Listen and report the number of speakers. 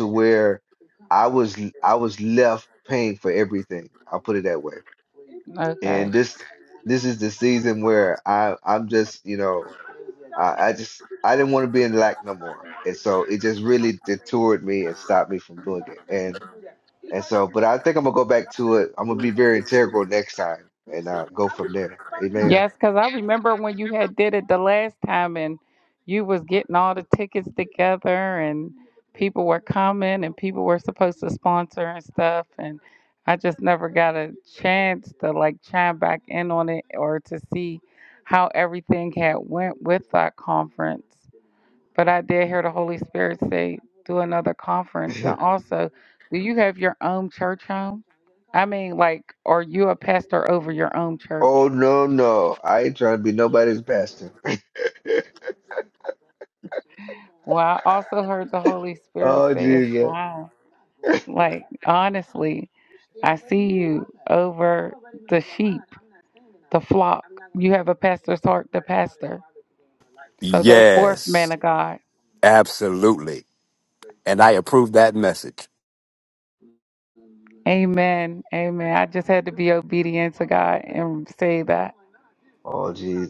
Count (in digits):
3